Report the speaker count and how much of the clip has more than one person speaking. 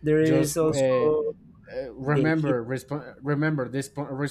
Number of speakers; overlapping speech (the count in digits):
2, about 33%